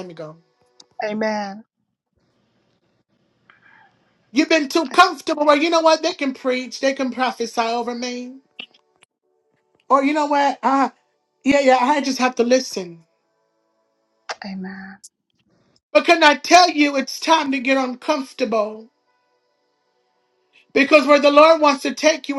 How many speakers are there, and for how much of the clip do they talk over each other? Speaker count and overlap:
2, no overlap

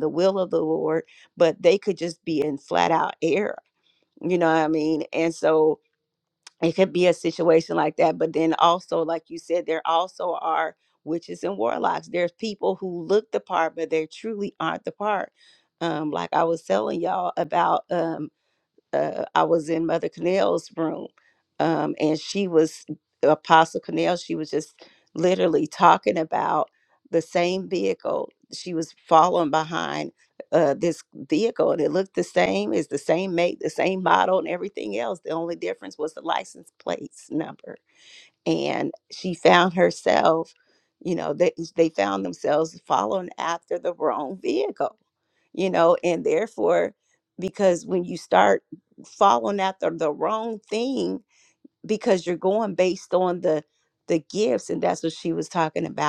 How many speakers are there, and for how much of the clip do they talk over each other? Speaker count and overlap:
1, no overlap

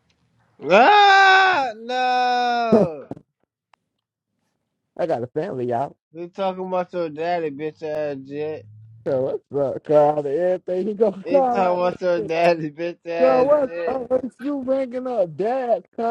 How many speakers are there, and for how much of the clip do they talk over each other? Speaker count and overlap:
2, about 6%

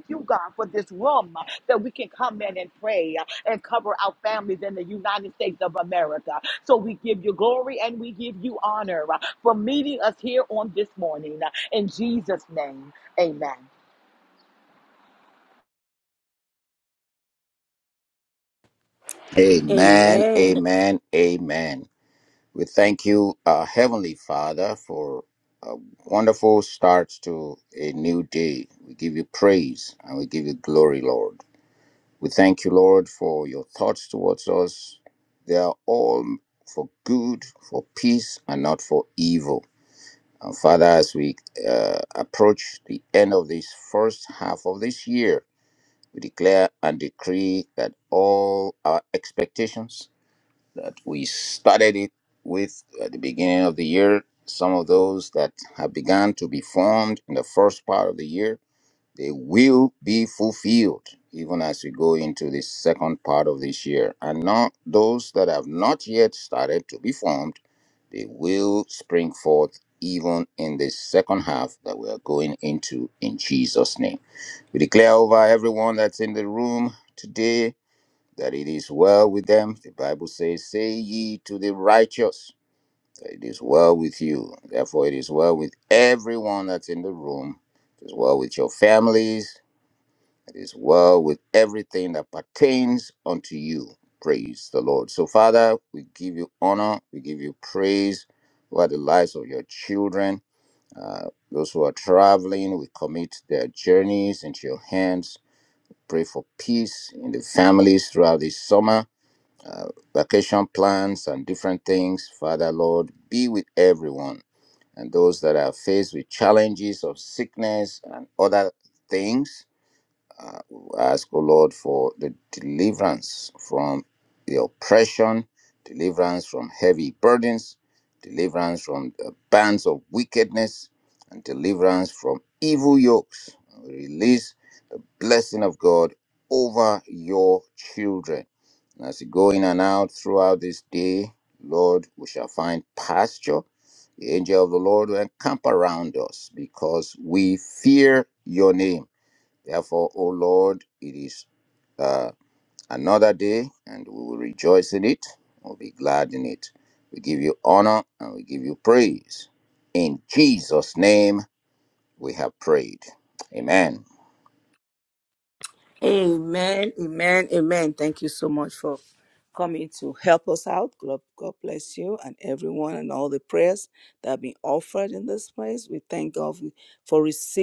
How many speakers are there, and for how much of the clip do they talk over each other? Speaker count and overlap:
3, under 1%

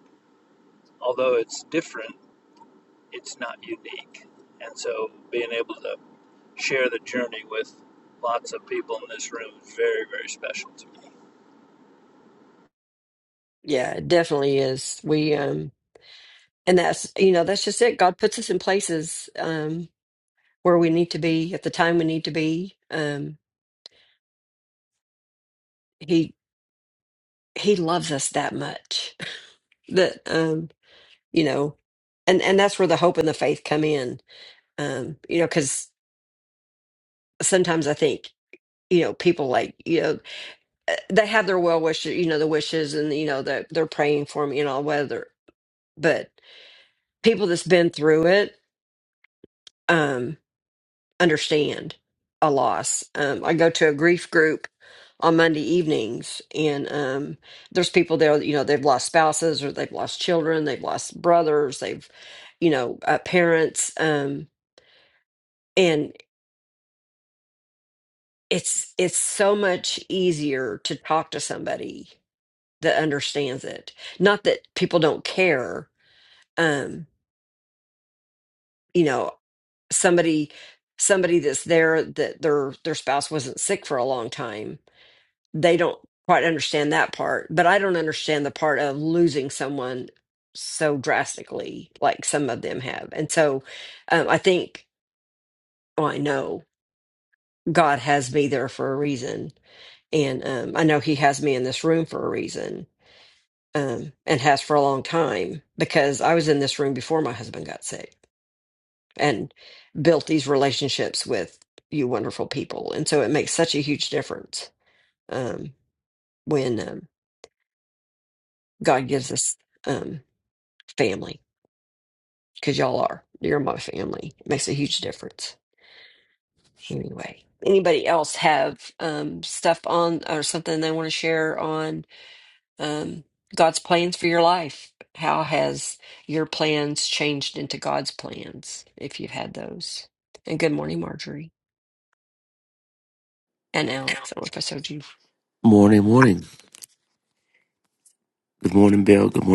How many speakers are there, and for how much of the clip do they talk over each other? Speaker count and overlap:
3, no overlap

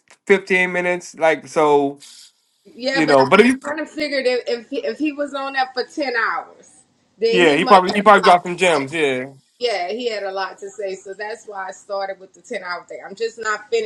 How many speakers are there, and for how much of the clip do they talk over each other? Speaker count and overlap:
2, about 14%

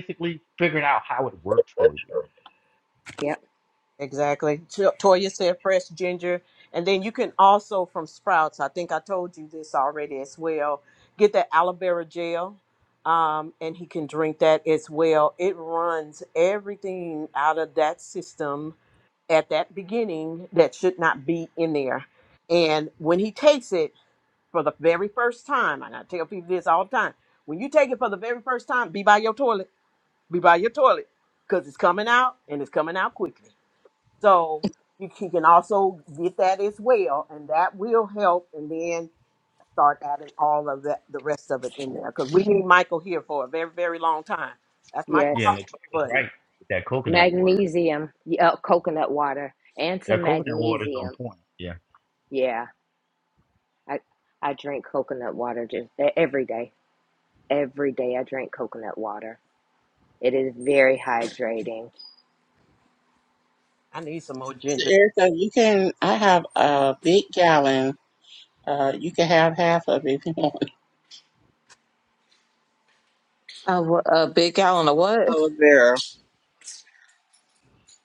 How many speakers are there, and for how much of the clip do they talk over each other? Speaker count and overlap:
5, about 3%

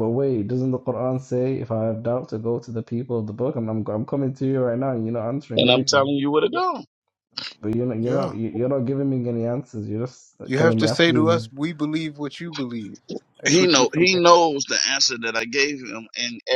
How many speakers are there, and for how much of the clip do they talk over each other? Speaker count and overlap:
3, about 15%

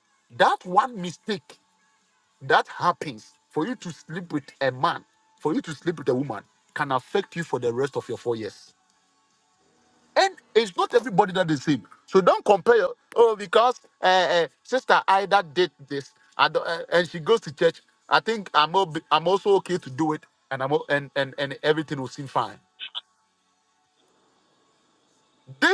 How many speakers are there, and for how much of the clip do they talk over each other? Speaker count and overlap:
1, no overlap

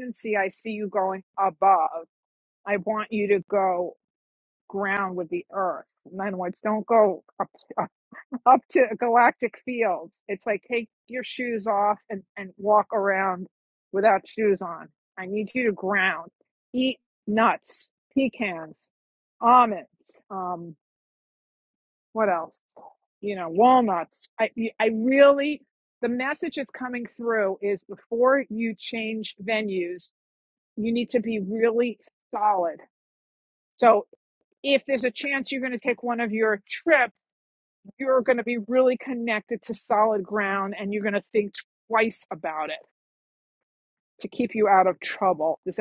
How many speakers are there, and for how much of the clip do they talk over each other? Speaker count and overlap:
1, no overlap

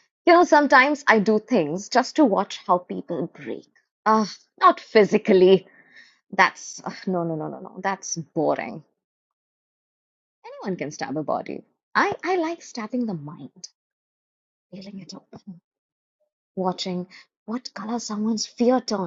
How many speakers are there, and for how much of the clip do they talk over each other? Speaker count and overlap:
1, no overlap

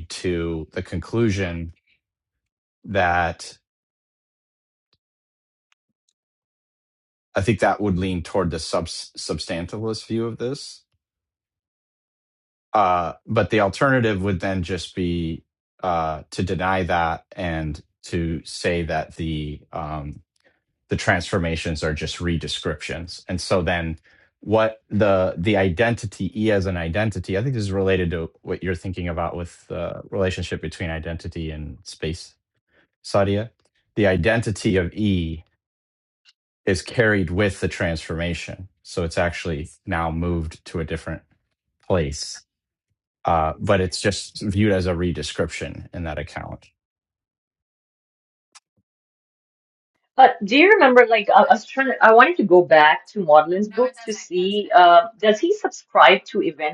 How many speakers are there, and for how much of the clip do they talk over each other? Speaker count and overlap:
2, no overlap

